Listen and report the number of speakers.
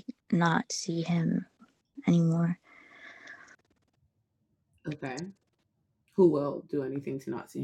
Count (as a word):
two